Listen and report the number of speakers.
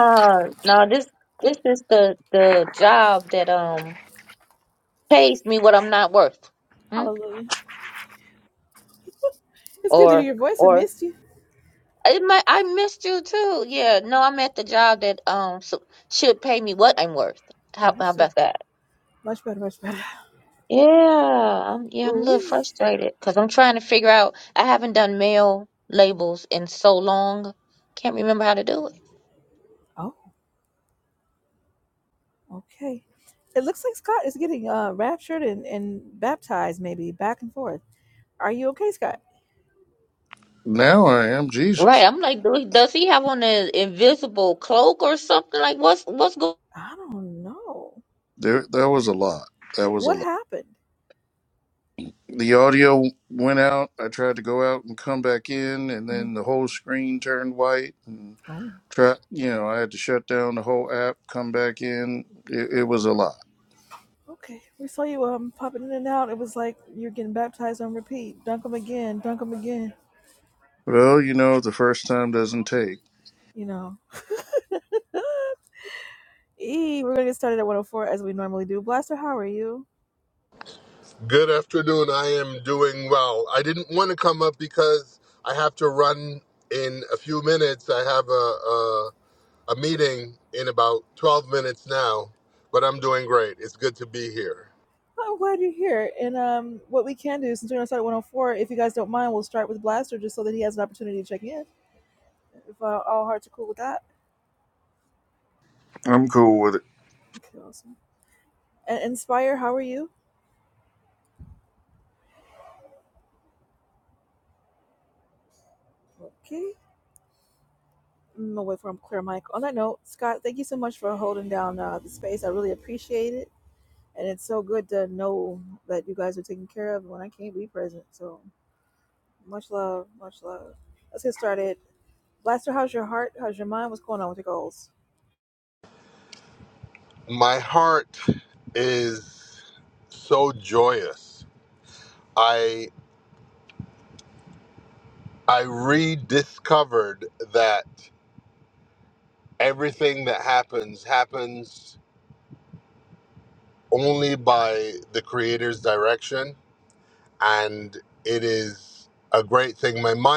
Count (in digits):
4